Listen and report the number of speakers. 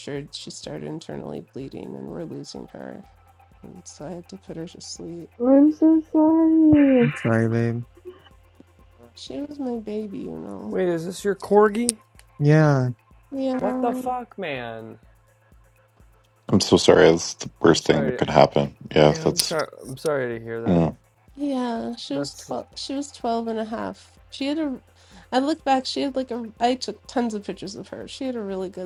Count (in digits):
5